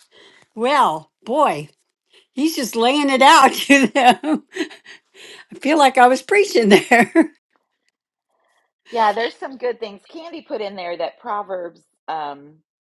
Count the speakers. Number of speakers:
two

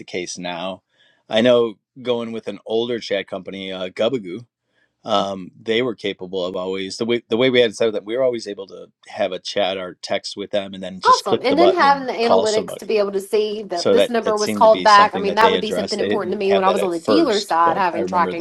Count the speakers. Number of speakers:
two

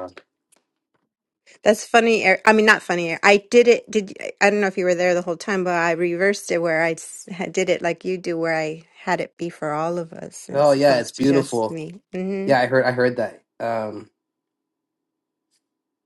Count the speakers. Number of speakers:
two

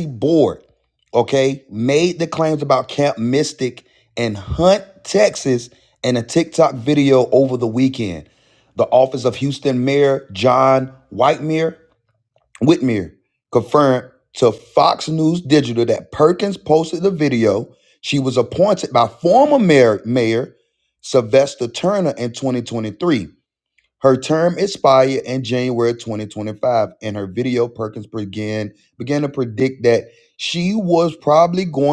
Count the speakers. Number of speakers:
one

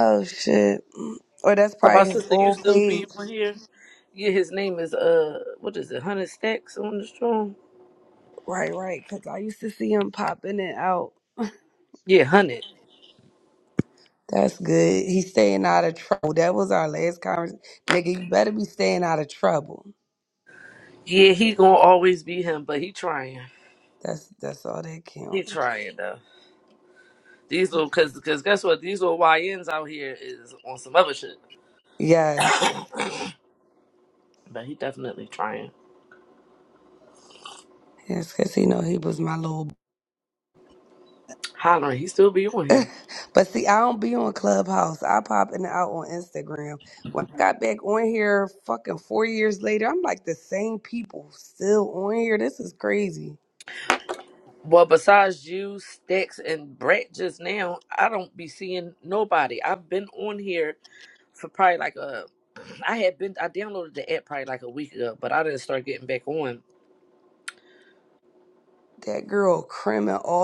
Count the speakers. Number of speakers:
two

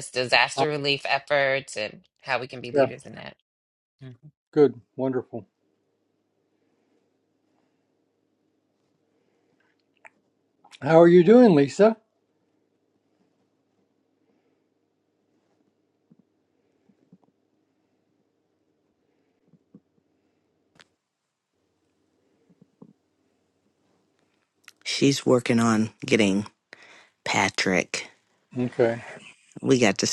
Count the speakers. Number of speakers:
three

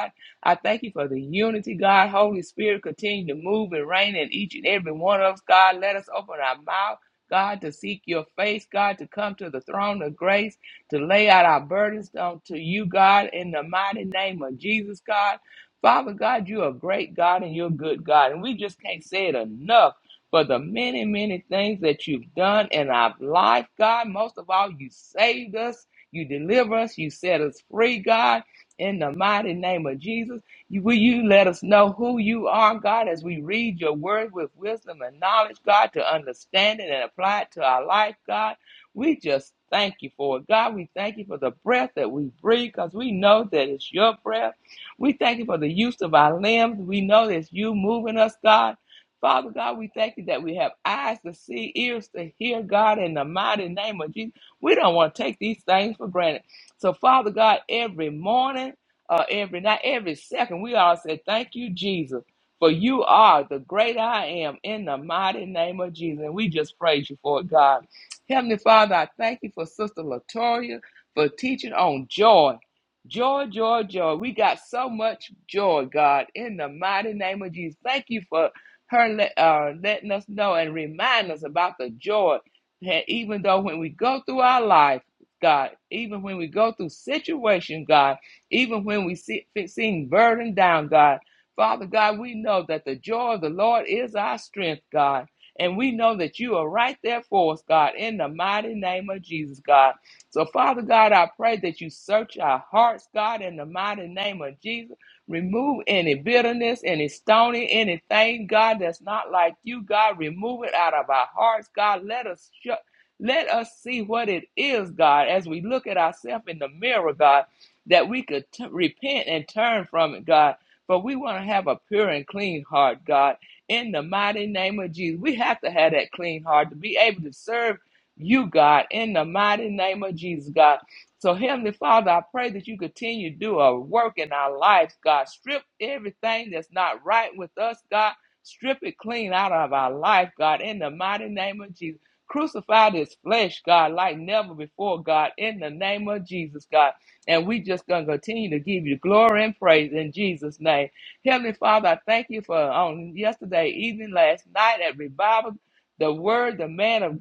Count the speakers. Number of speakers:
one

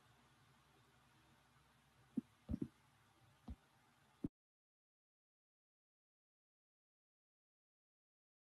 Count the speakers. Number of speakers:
zero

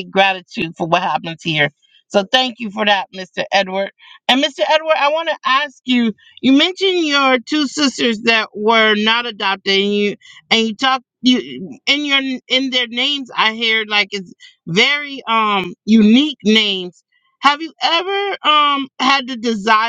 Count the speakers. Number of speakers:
one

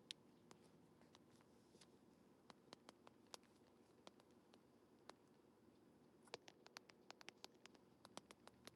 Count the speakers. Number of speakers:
zero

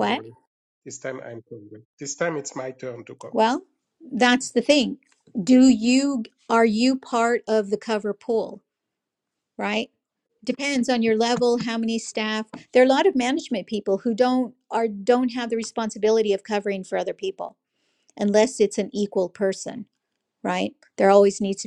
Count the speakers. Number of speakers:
two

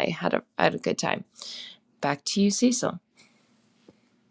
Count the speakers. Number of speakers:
one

